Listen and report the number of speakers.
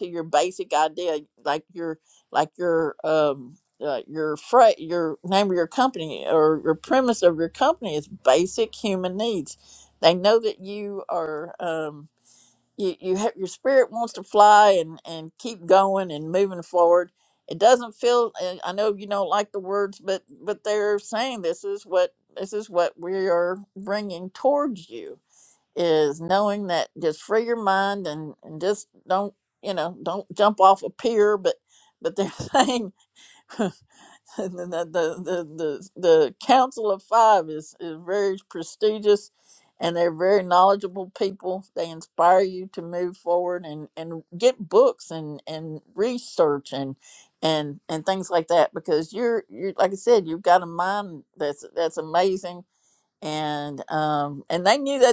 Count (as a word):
one